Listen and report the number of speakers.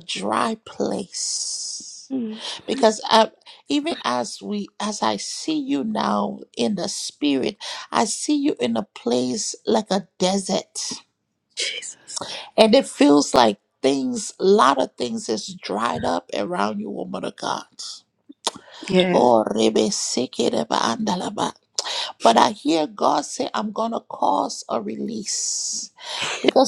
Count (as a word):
two